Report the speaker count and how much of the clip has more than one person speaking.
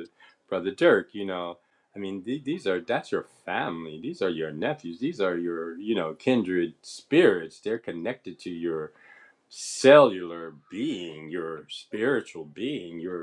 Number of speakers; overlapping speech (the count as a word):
one, no overlap